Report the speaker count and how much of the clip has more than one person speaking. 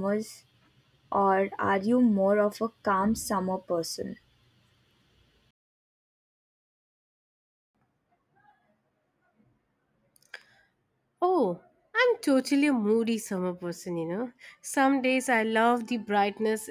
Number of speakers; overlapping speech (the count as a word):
two, no overlap